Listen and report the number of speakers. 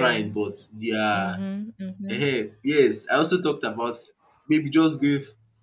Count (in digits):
2